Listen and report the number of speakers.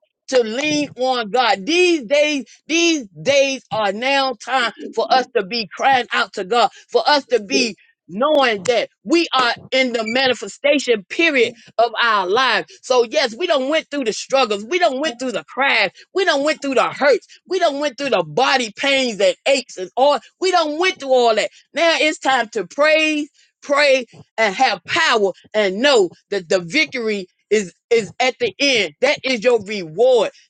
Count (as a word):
one